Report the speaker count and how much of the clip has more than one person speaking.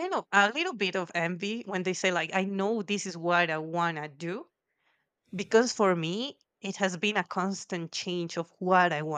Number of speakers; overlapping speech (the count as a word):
one, no overlap